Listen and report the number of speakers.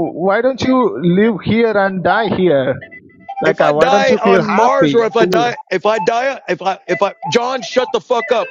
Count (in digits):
2